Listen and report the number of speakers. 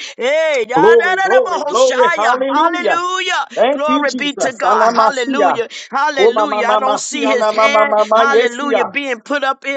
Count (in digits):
2